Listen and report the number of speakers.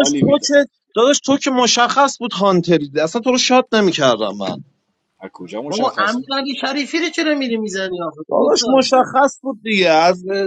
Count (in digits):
3